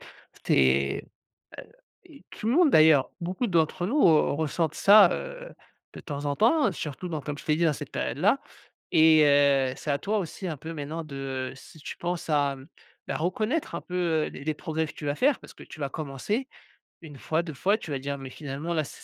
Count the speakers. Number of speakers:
1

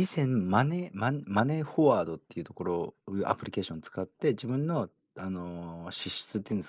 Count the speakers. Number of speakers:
1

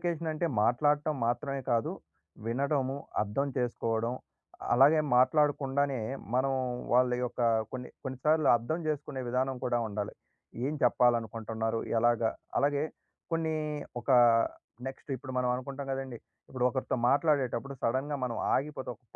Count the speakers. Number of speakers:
1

